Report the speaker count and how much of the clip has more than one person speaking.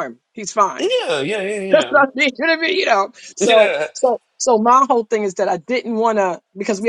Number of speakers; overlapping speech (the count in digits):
2, about 9%